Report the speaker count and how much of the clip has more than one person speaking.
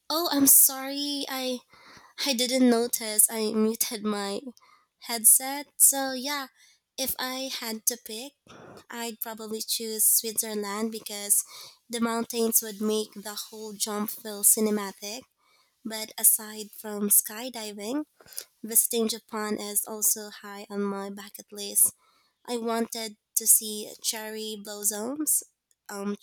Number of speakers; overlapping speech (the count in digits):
1, no overlap